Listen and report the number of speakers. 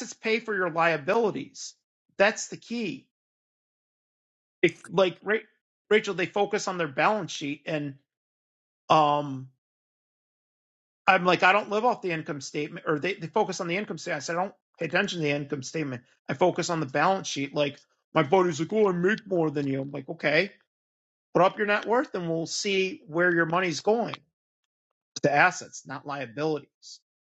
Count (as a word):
one